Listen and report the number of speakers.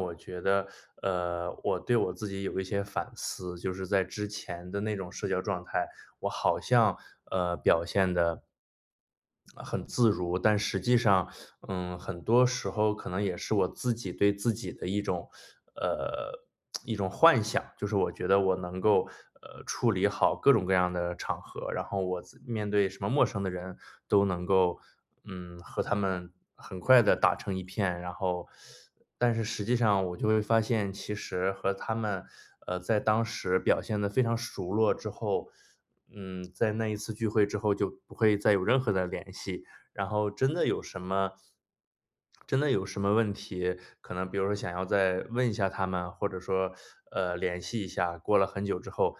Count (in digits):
1